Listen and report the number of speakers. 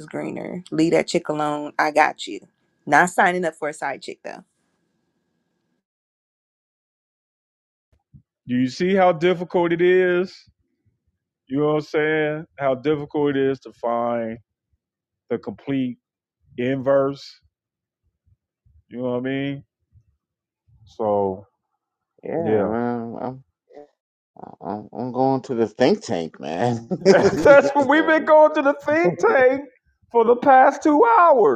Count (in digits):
3